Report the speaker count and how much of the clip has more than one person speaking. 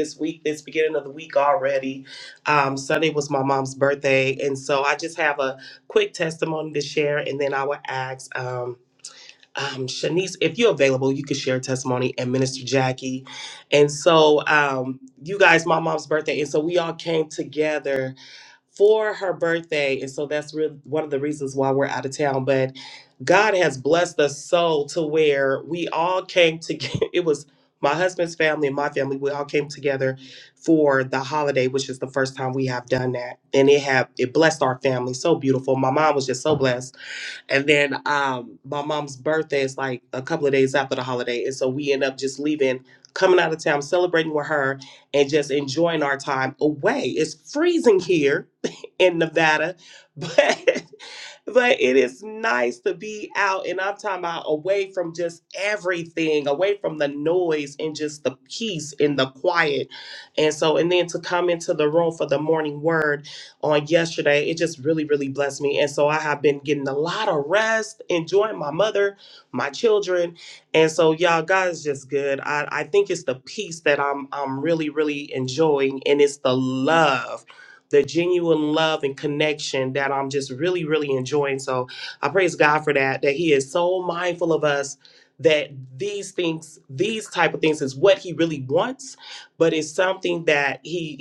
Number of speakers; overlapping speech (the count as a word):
one, no overlap